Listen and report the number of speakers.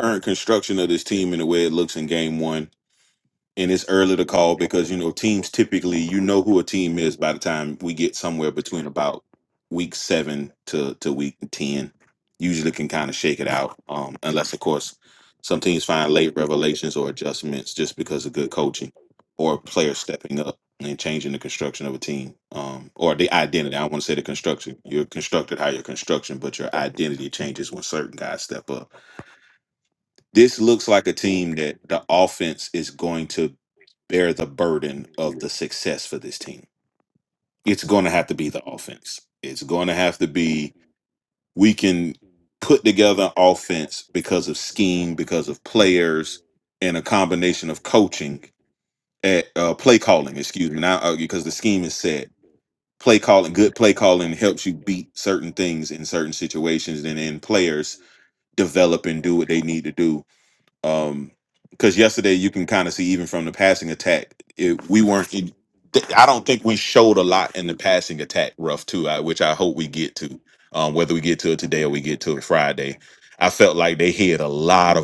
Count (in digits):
1